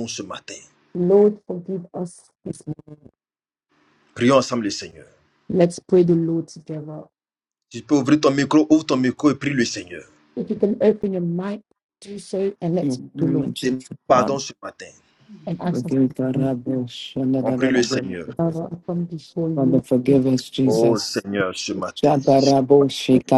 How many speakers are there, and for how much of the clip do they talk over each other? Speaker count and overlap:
3, about 16%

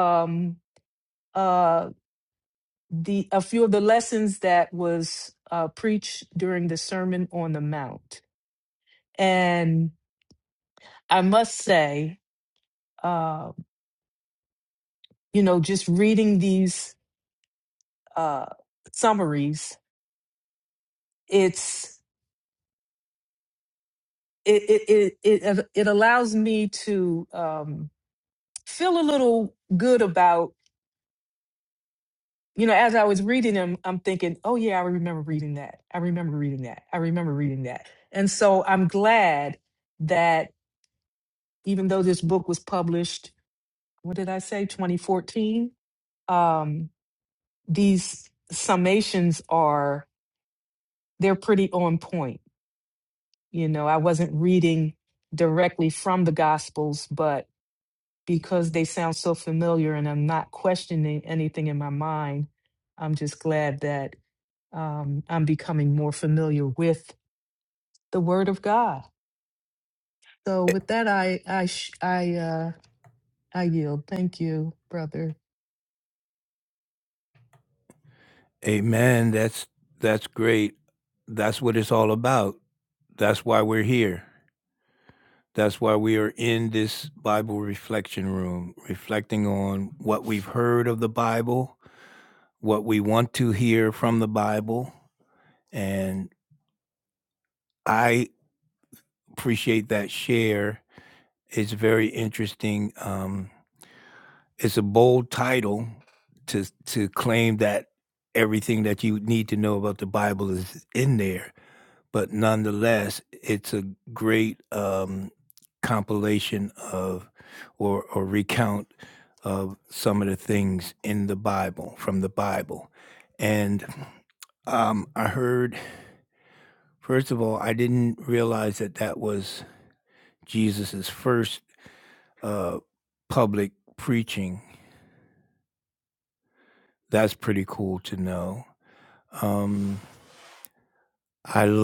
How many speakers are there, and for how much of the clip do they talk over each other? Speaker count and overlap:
2, no overlap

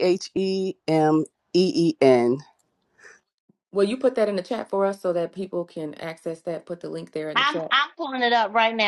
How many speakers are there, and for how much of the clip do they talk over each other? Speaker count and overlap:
3, about 4%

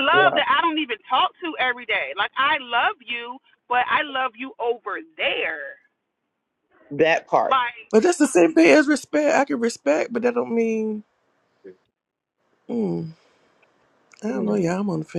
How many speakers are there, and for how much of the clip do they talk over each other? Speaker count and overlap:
3, about 5%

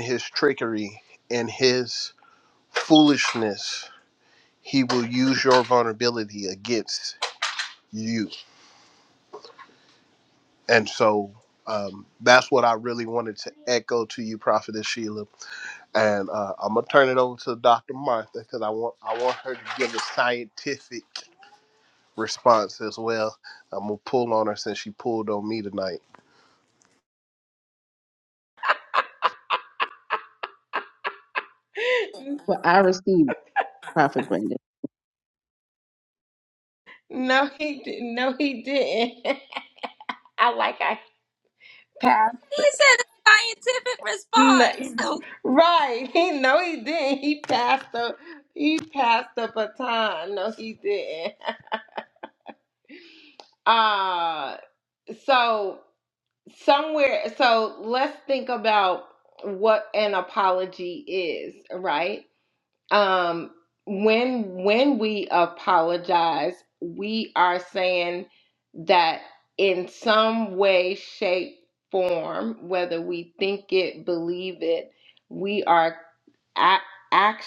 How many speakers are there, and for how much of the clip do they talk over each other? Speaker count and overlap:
4, about 1%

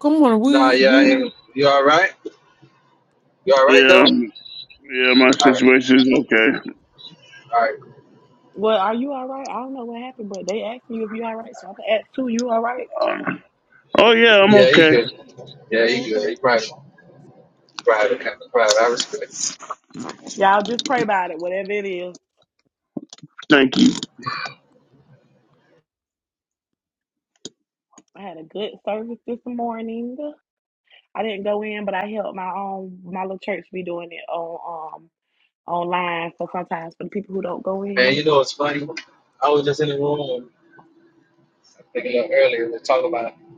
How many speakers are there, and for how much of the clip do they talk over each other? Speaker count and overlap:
4, about 6%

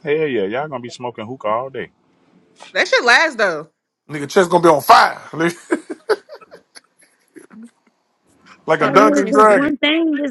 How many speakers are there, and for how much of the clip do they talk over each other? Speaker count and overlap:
4, about 9%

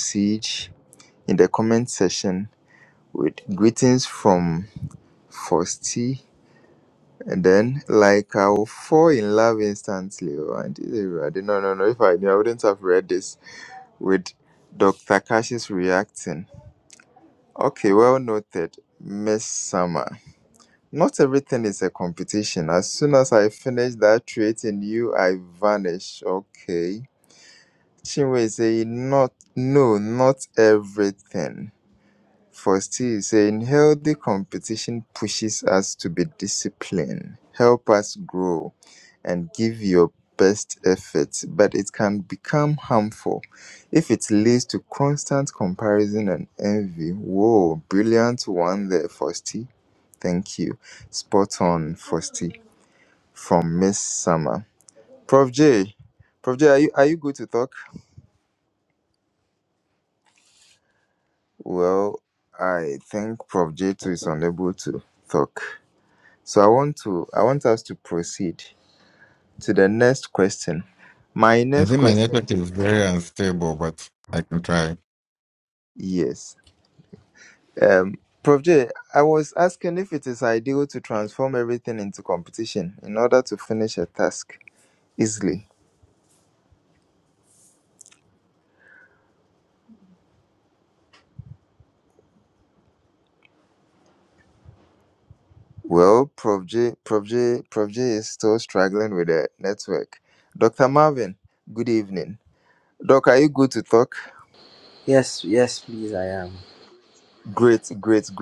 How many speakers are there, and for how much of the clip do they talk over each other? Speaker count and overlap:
3, about 1%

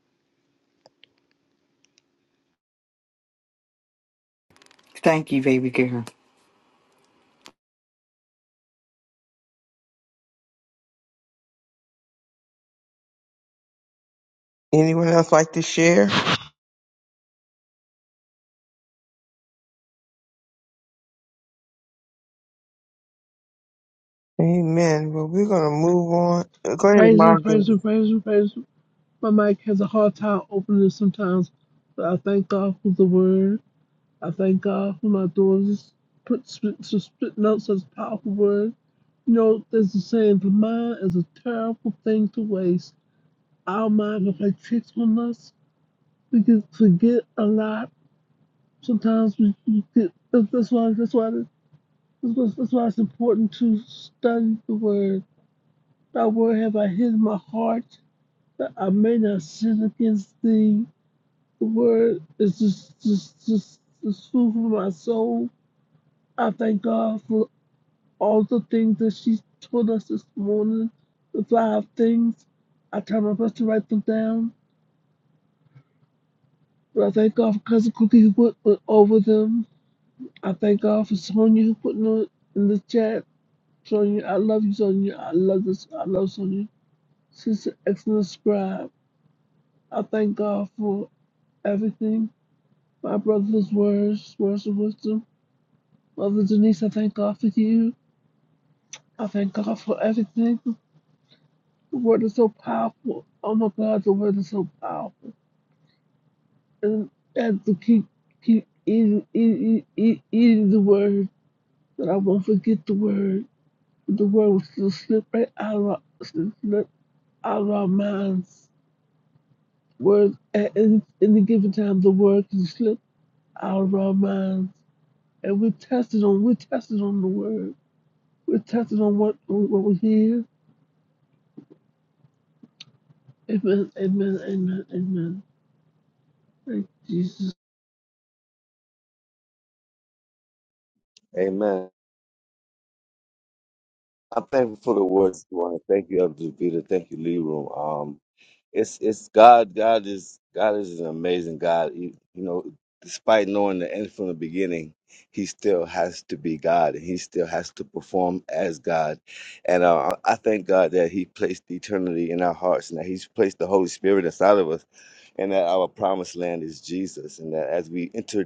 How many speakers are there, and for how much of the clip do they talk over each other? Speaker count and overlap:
4, under 1%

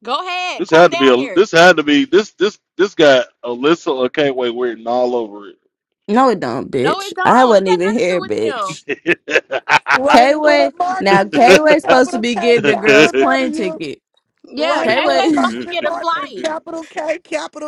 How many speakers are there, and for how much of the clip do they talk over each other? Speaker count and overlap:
4, about 47%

